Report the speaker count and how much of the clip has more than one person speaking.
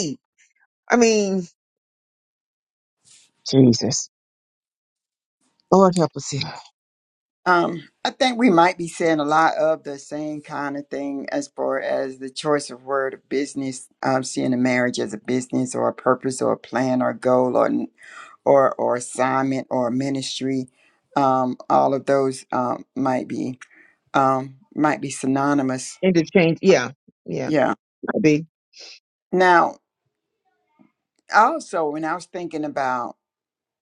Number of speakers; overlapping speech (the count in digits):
2, under 1%